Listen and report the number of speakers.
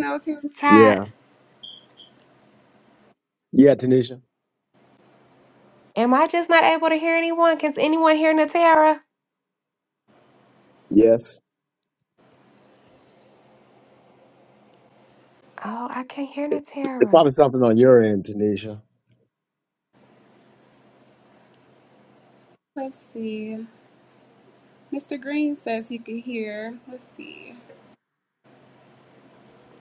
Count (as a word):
three